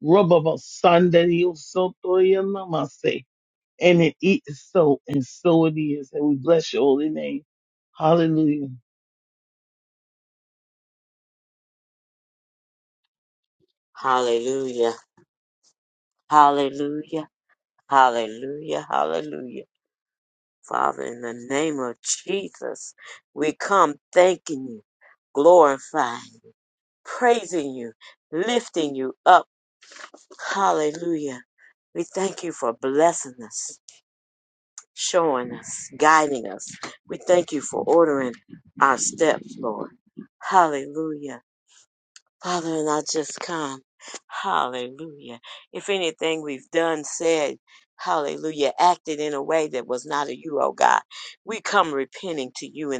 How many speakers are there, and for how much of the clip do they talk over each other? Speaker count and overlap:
2, no overlap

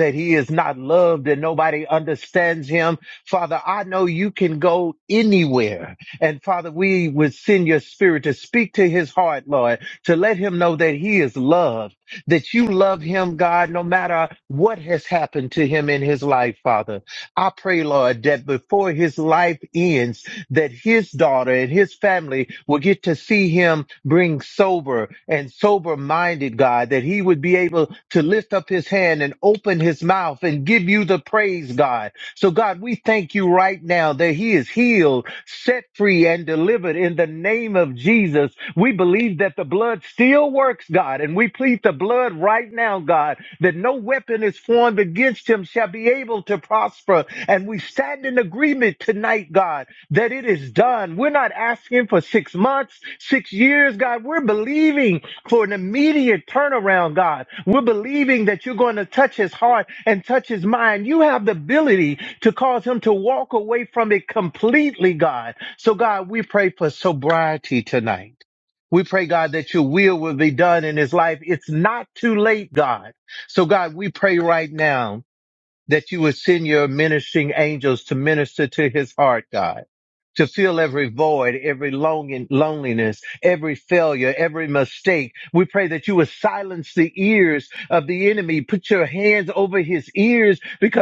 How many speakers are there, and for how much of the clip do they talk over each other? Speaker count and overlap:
1, no overlap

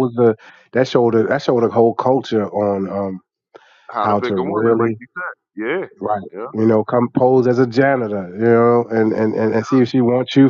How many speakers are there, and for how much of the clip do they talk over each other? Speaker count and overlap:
2, about 11%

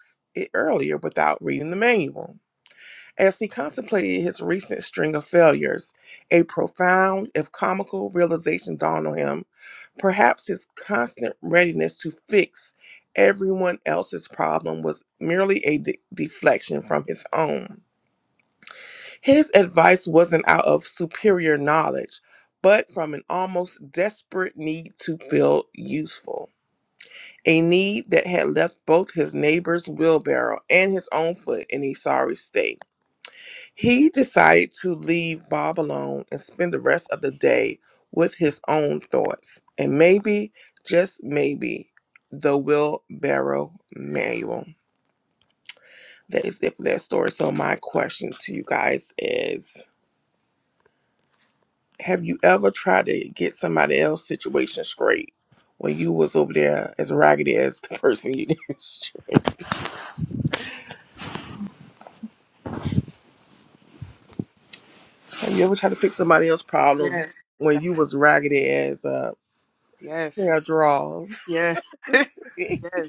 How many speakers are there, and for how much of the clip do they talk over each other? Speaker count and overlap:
2, under 1%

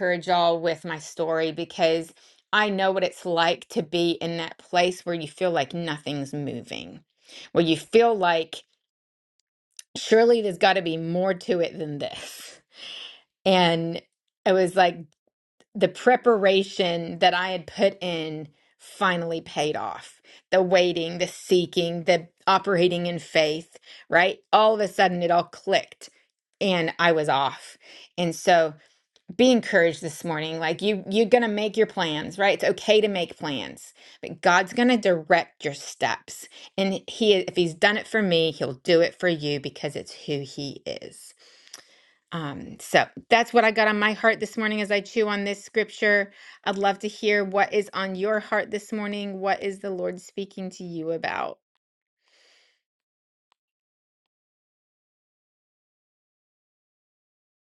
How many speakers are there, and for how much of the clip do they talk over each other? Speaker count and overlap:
1, no overlap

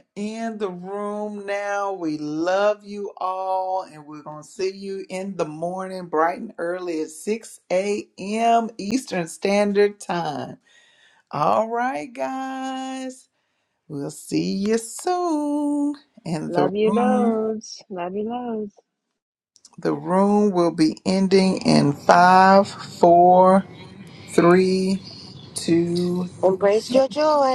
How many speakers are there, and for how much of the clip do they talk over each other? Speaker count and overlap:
3, about 4%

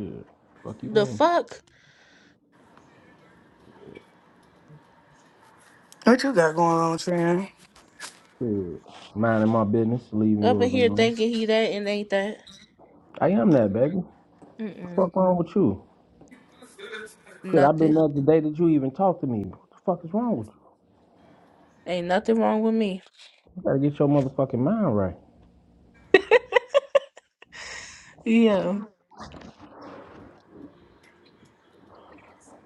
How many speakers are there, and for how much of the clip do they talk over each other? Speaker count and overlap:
3, about 5%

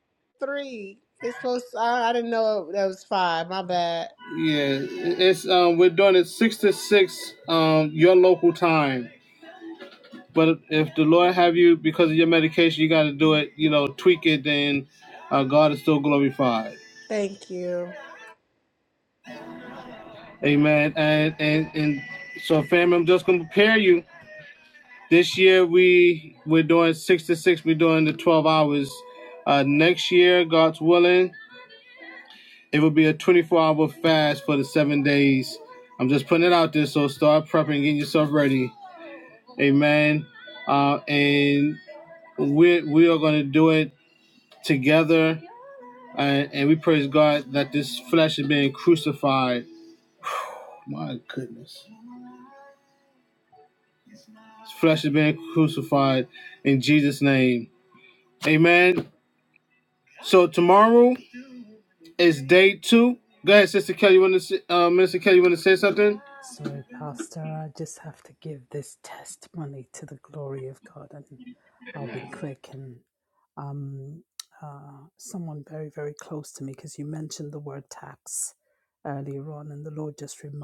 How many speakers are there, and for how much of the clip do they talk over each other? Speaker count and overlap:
3, no overlap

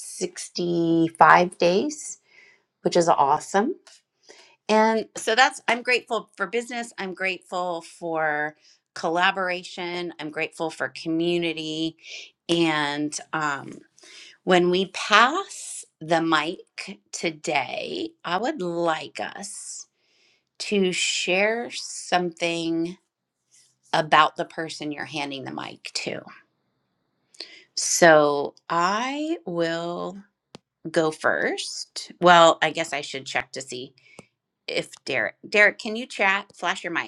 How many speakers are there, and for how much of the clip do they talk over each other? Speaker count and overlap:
1, no overlap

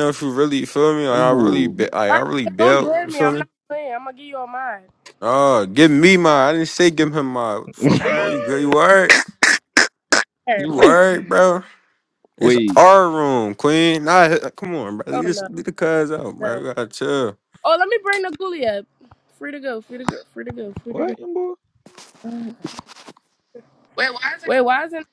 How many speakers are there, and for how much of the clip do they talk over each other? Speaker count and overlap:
3, about 14%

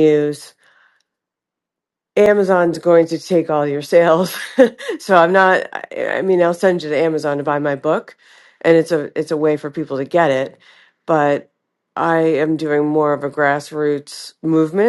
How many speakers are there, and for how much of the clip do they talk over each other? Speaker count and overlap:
1, no overlap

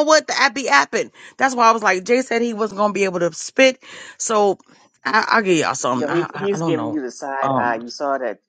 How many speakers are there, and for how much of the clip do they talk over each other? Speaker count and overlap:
2, about 18%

